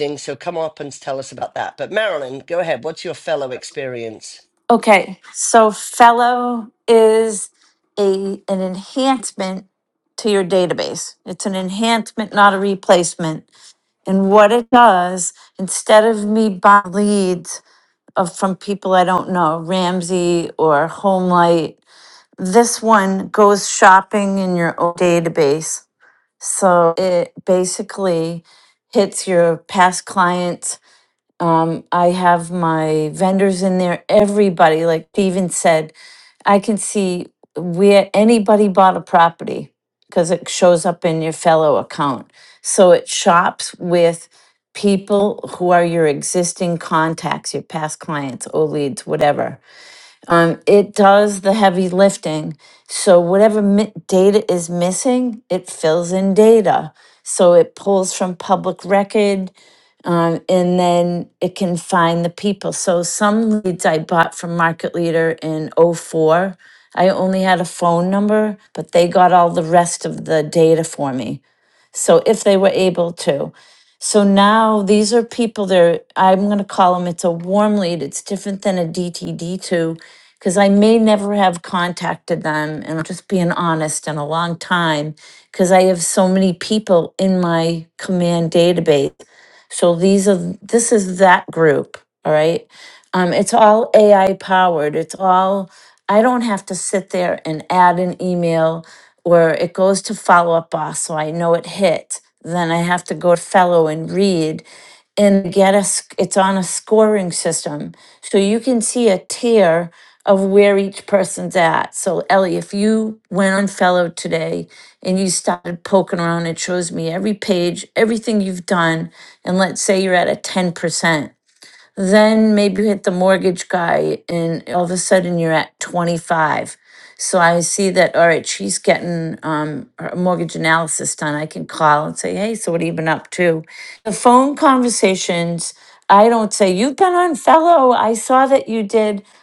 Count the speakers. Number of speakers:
2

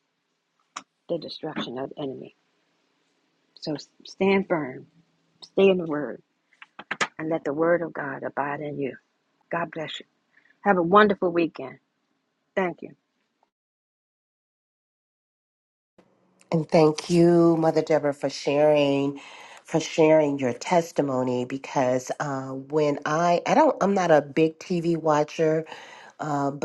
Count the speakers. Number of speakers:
2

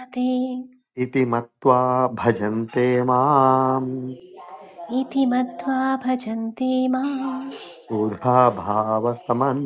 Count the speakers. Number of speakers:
2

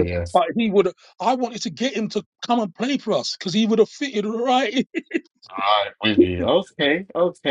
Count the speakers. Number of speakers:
2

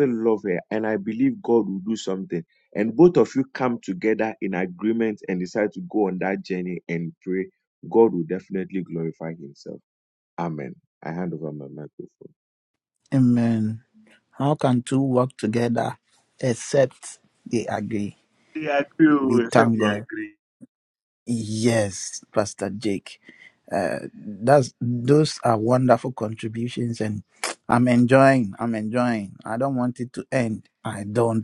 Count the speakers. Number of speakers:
2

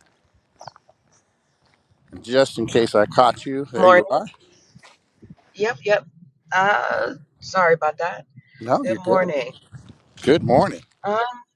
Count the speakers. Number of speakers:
2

